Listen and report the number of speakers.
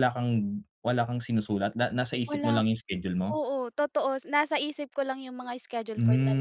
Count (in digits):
2